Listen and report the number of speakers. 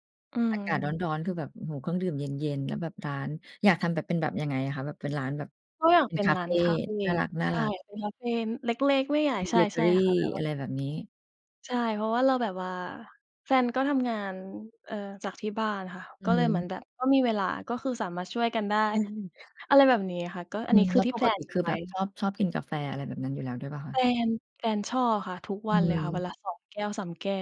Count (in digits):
2